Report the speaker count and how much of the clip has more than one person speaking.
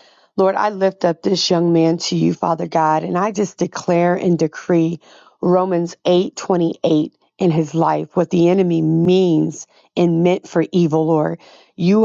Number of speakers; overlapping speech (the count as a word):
one, no overlap